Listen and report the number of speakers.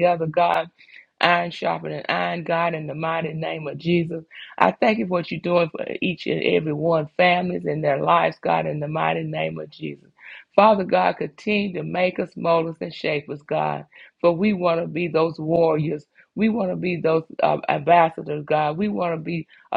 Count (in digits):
1